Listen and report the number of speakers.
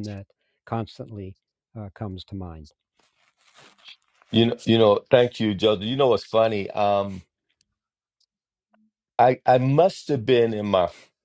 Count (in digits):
2